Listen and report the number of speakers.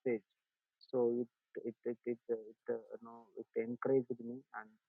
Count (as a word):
one